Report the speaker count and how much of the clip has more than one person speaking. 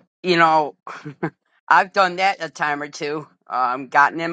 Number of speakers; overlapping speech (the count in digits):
1, no overlap